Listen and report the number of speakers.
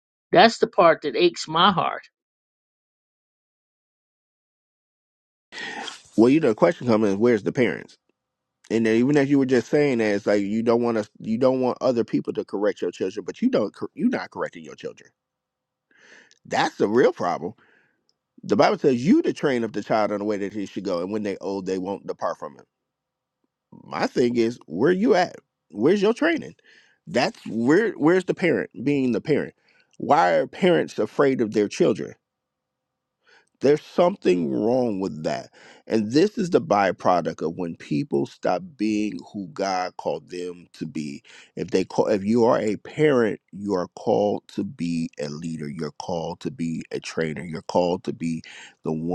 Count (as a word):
two